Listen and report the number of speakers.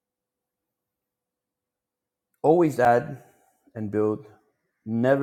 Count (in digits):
1